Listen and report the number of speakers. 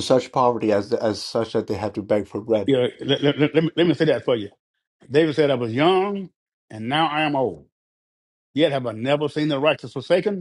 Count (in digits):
2